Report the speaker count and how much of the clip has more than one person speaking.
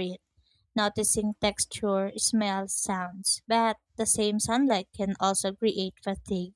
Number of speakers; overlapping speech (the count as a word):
one, no overlap